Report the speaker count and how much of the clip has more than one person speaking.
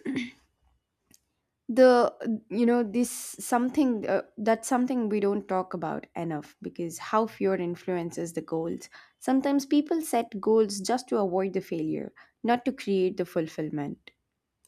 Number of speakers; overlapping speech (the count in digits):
1, no overlap